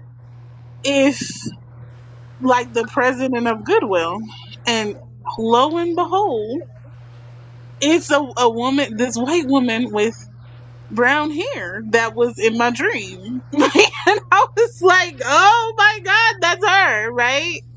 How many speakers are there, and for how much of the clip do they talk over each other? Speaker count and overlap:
1, no overlap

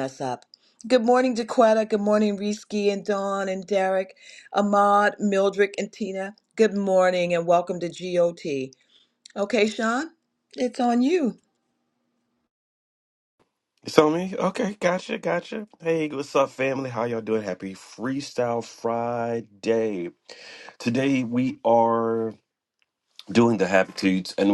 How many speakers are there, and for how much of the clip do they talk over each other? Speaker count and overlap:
2, no overlap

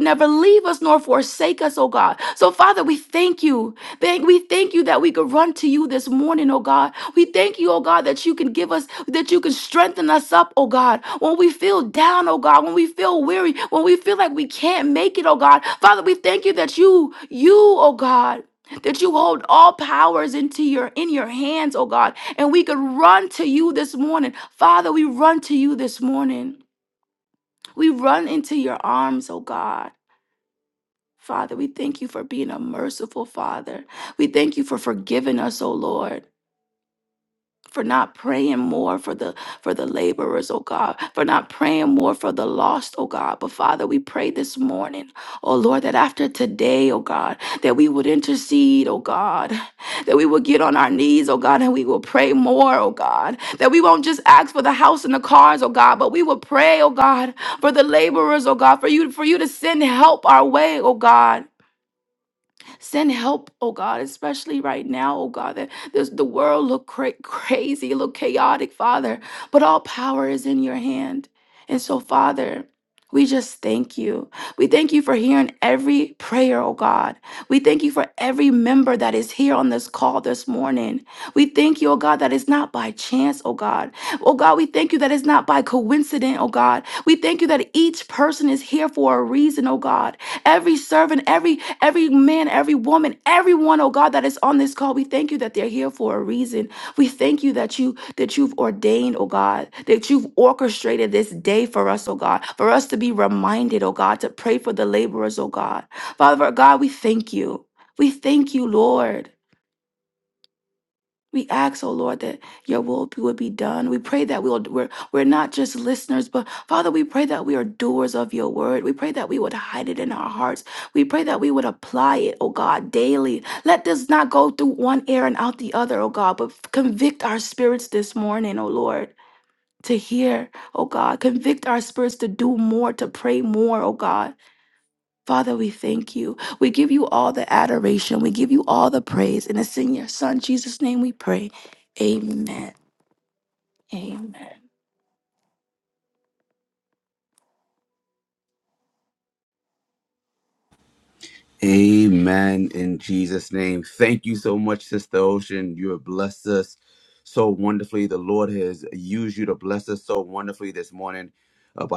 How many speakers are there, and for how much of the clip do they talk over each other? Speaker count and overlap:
2, no overlap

